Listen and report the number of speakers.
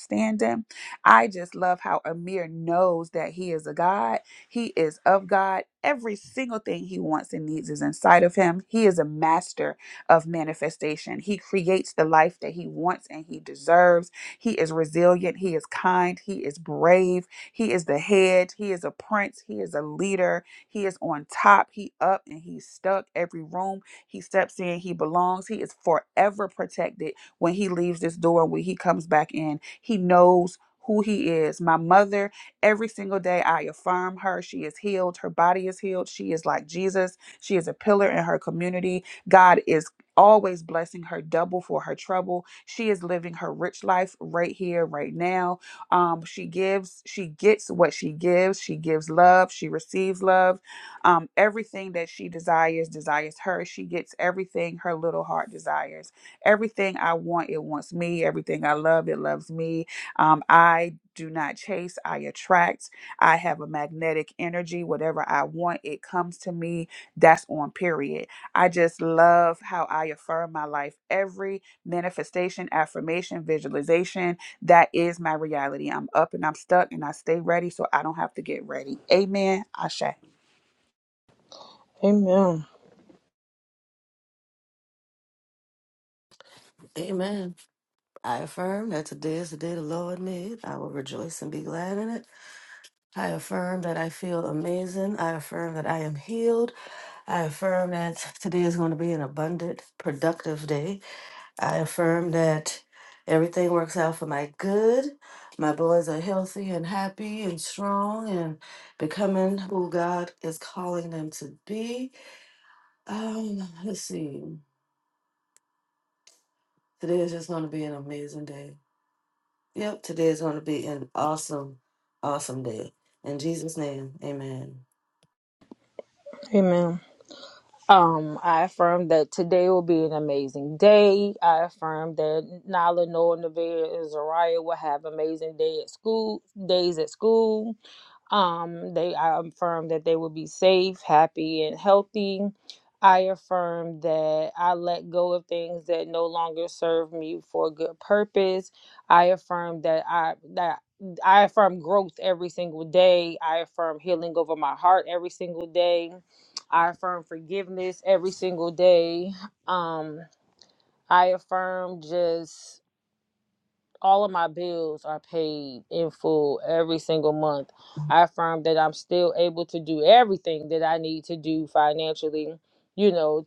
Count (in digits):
3